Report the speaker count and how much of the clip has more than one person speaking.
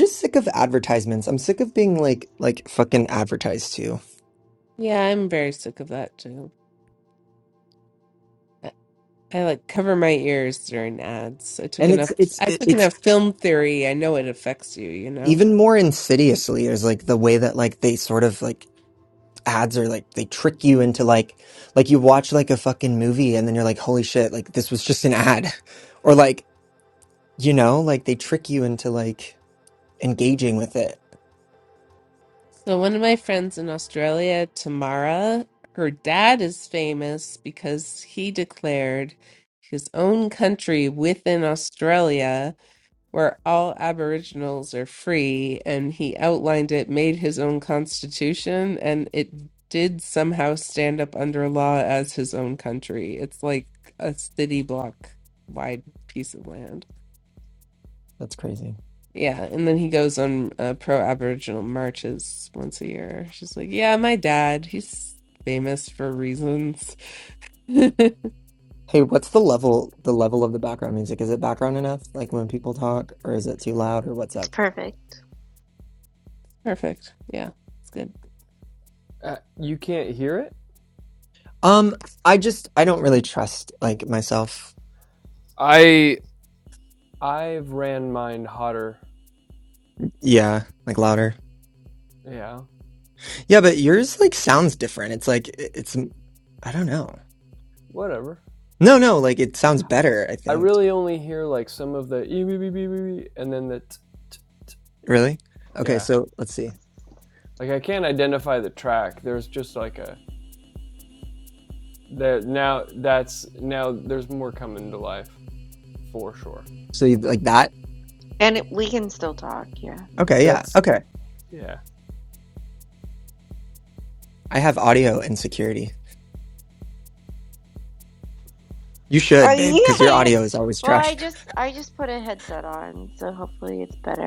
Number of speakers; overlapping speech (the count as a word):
four, about 3%